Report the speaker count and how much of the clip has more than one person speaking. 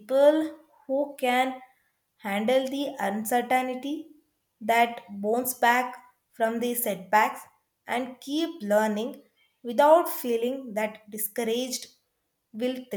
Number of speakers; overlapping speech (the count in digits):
1, no overlap